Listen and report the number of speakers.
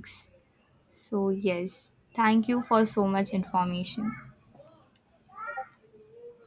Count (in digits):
1